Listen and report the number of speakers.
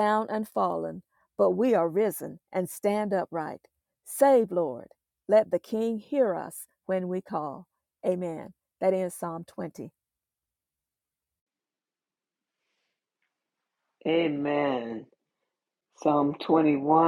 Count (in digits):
2